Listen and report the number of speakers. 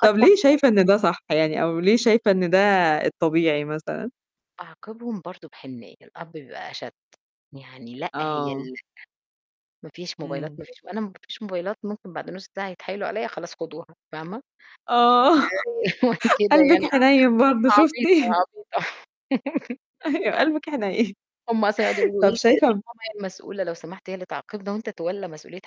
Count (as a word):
two